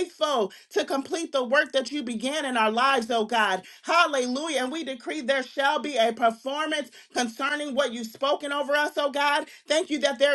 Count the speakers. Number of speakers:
one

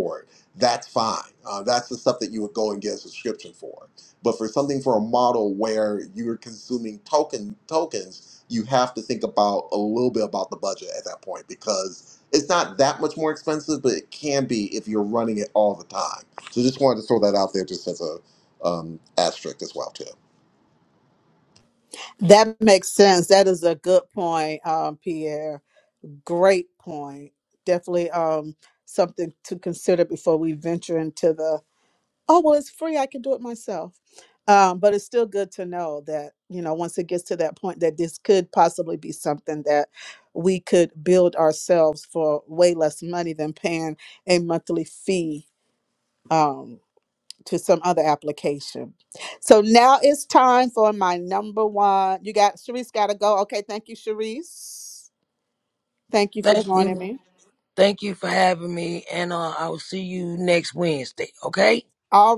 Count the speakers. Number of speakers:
three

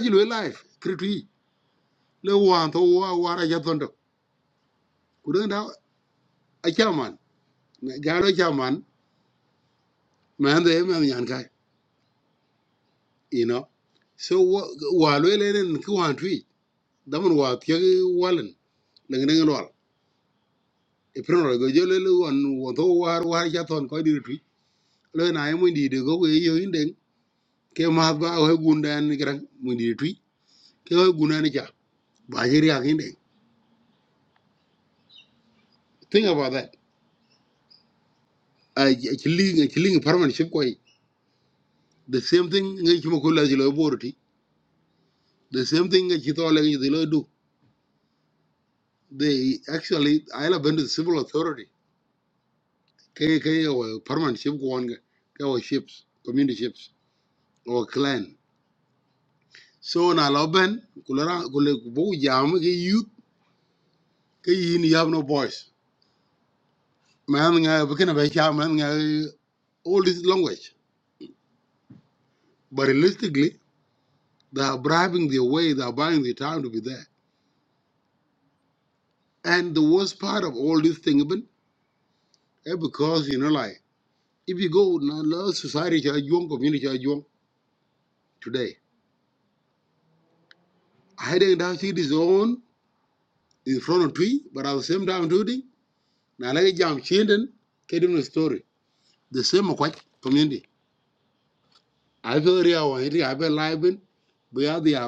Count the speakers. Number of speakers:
one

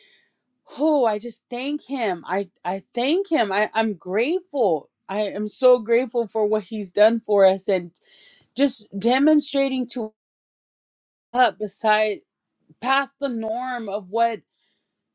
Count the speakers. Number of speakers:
one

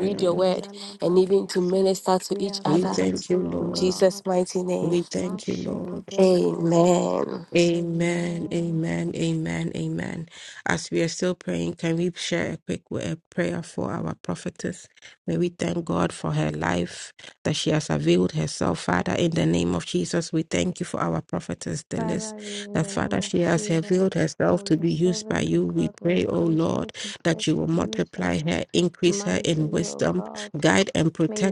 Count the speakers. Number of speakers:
three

